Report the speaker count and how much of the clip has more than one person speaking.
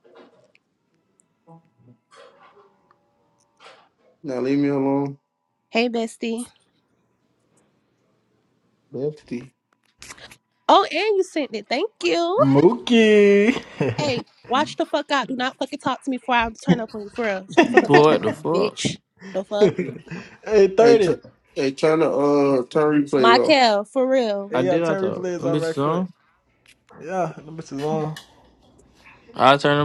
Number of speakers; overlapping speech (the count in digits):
4, about 10%